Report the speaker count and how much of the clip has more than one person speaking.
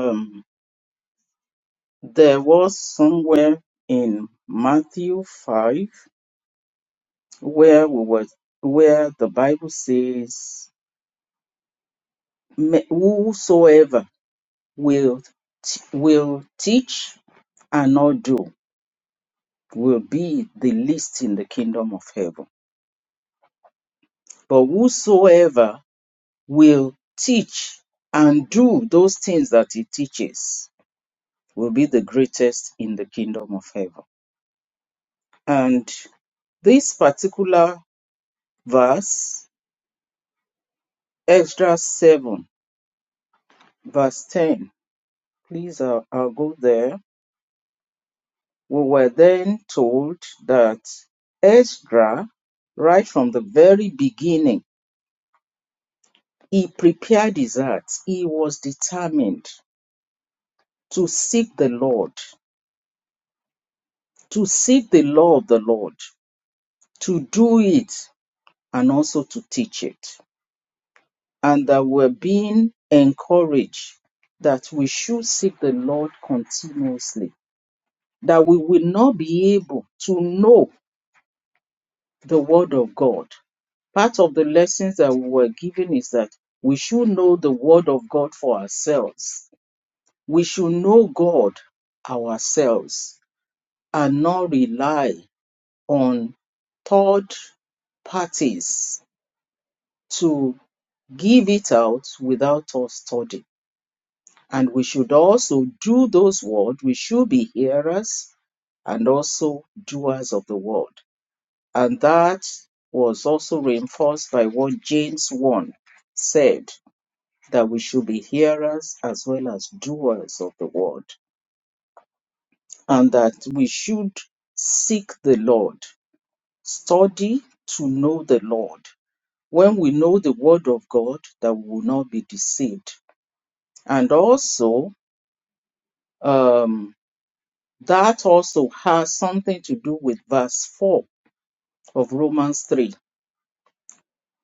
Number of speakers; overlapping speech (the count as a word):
one, no overlap